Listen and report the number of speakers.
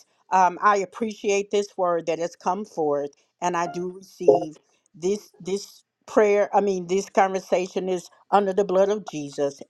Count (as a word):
one